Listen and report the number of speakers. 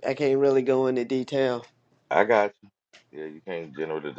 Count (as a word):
two